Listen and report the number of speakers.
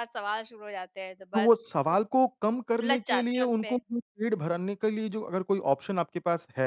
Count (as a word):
two